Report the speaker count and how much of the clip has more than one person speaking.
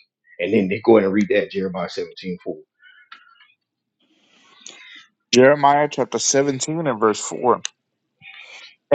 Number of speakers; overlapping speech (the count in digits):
2, no overlap